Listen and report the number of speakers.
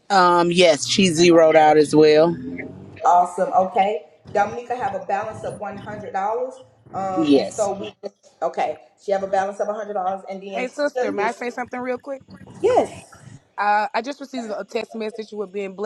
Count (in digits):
3